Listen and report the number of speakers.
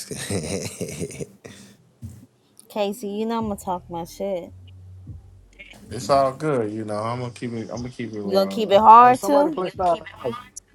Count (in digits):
4